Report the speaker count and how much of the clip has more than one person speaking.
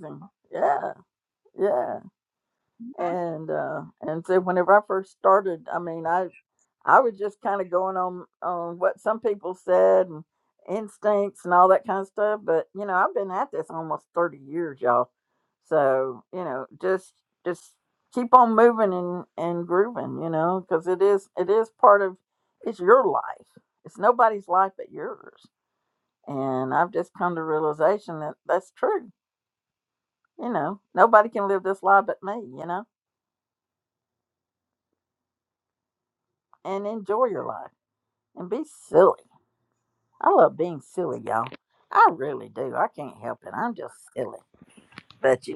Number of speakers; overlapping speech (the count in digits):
1, no overlap